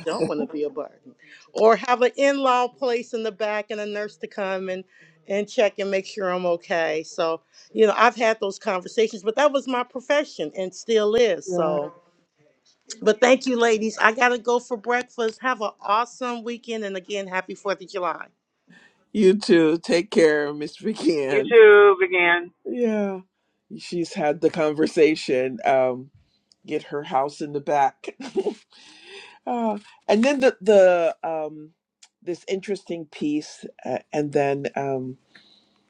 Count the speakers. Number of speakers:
3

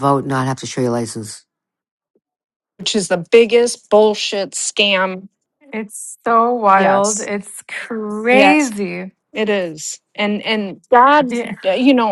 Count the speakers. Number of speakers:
3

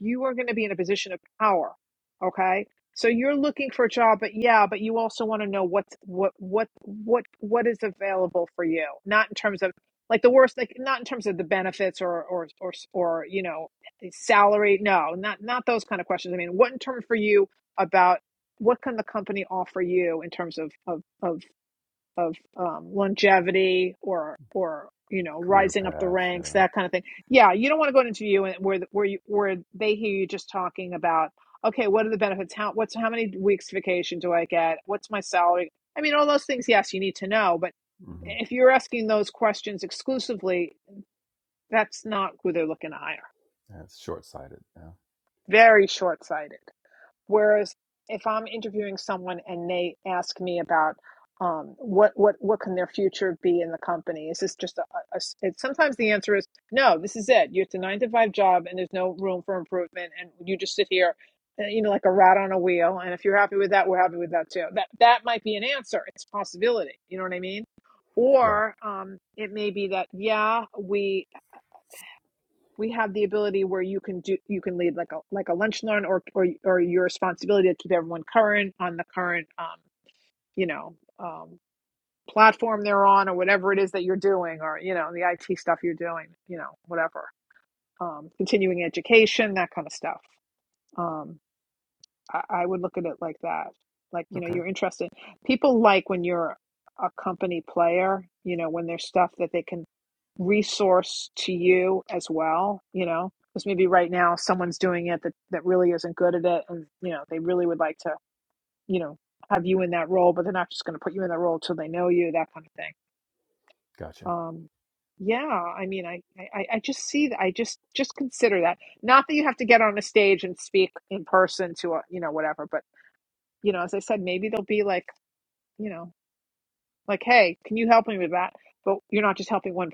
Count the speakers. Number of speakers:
2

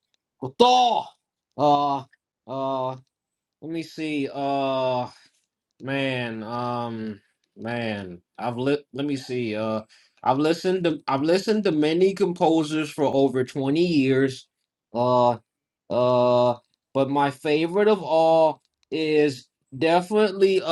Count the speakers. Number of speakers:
1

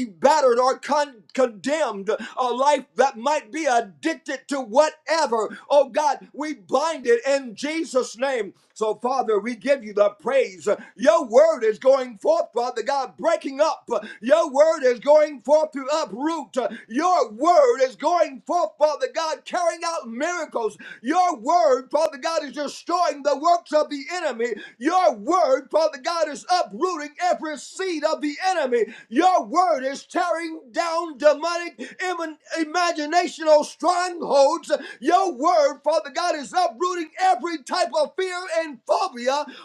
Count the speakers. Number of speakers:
1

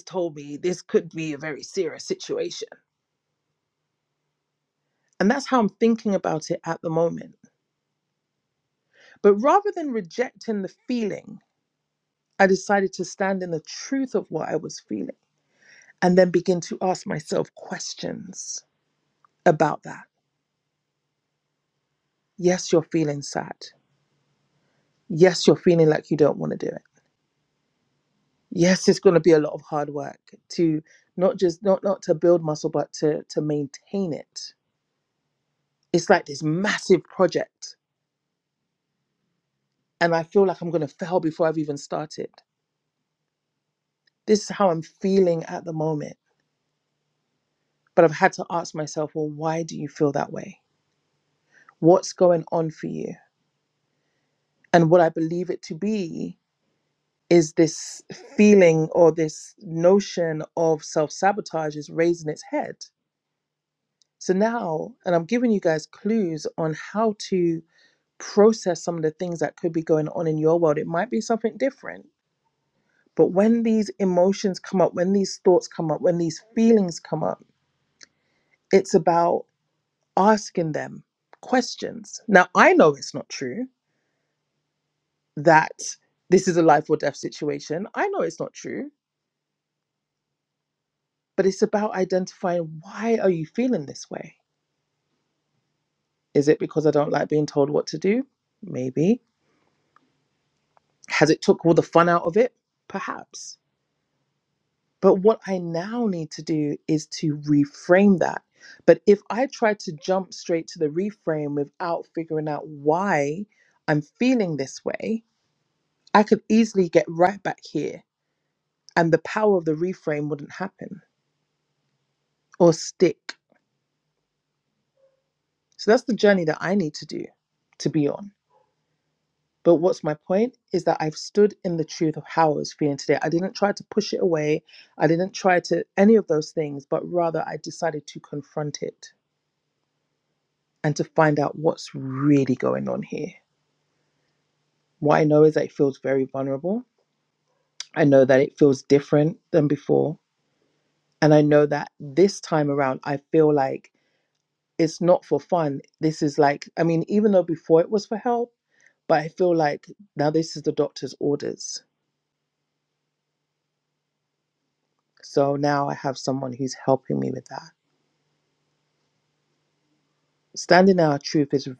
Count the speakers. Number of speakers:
1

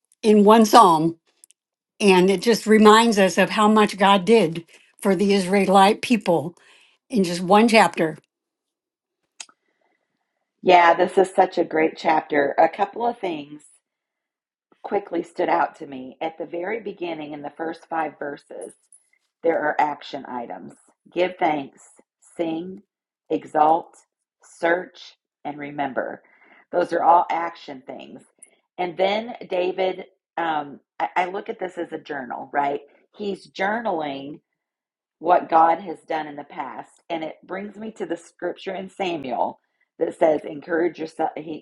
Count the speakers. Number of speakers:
2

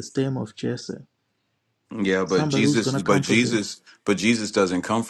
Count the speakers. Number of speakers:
2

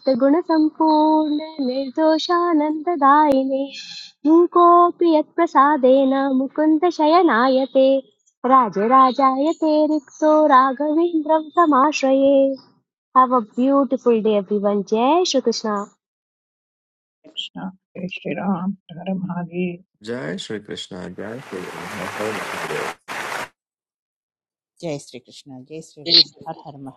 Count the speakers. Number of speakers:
4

